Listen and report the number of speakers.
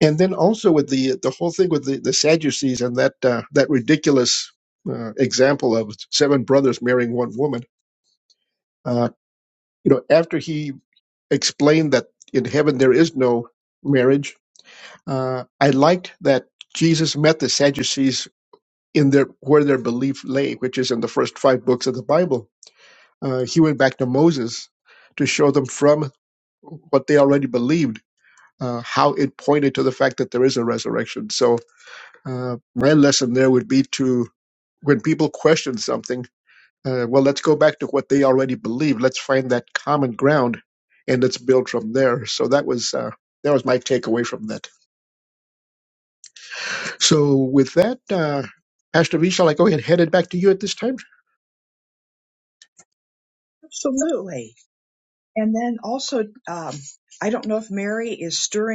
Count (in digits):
2